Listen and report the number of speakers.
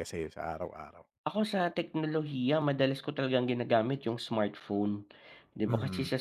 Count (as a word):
two